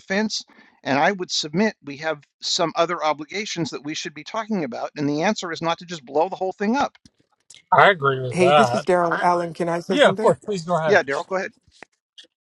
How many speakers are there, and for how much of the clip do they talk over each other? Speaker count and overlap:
3, about 9%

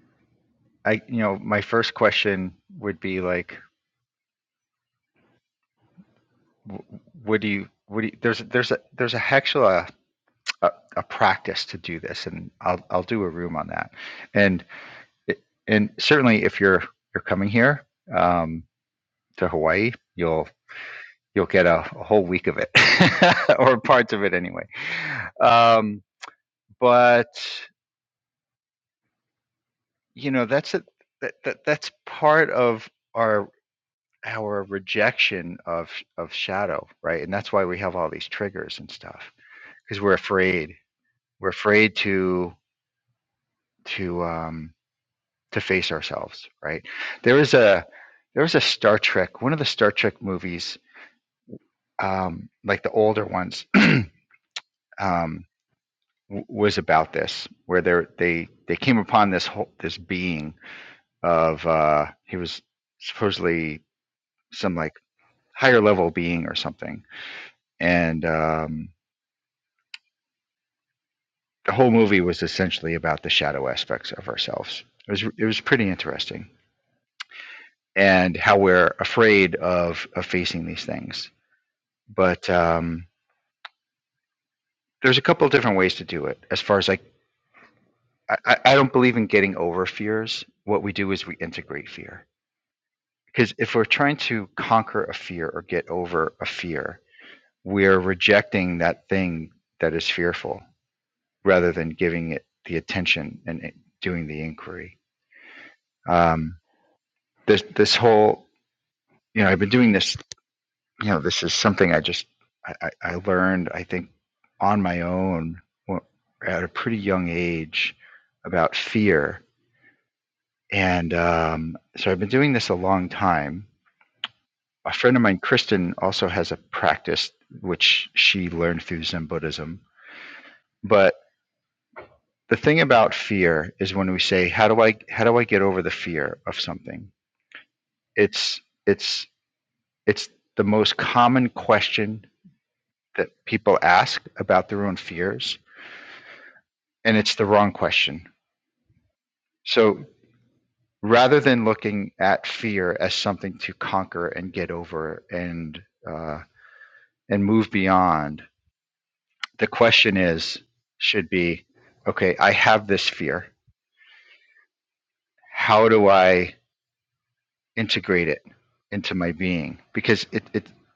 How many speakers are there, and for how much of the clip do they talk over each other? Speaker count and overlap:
1, no overlap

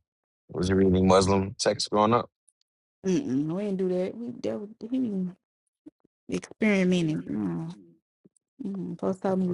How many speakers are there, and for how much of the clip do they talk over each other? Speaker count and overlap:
2, no overlap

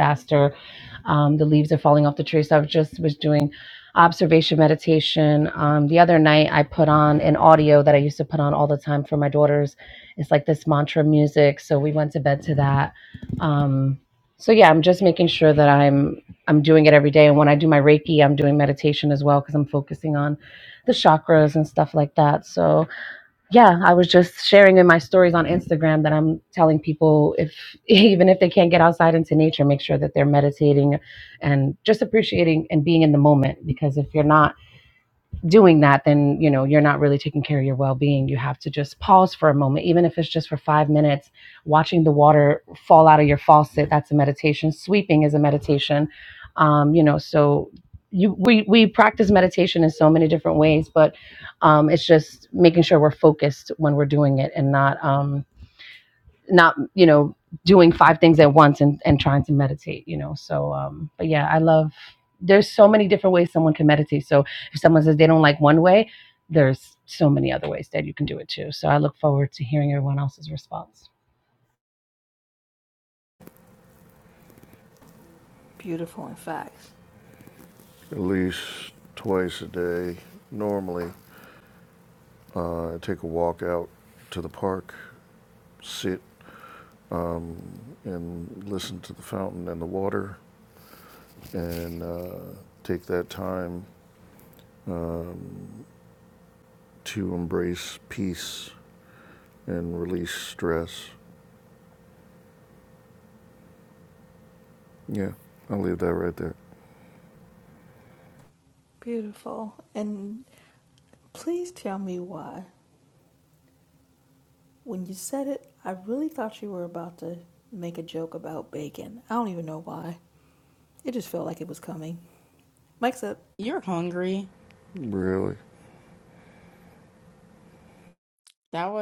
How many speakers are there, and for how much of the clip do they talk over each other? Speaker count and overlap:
4, no overlap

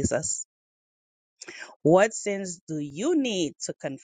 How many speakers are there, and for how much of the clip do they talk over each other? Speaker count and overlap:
1, no overlap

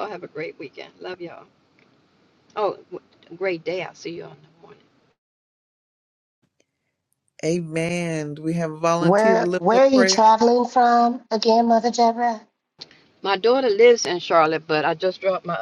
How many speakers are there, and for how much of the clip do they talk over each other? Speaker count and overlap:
3, about 8%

